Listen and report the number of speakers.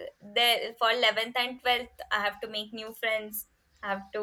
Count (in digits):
1